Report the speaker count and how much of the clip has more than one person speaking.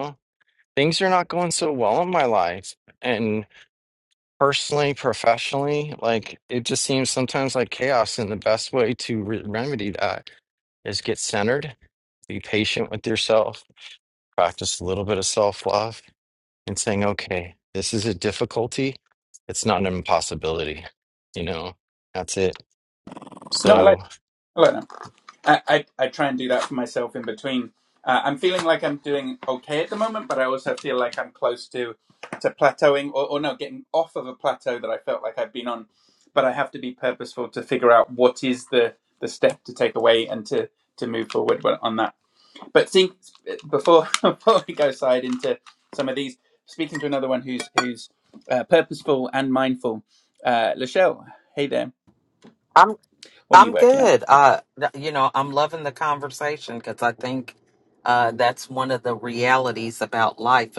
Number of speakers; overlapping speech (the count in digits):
3, about 2%